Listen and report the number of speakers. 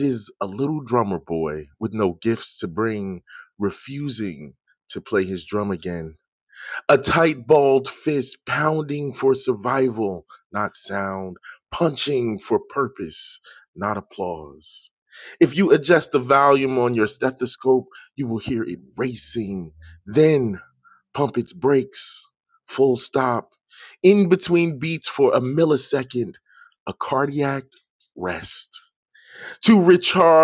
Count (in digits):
1